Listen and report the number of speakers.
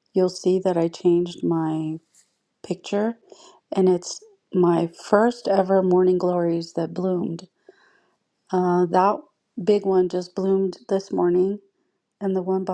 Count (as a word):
one